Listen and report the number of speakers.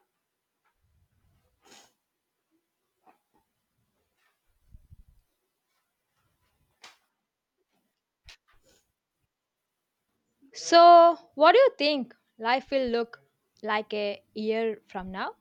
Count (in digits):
1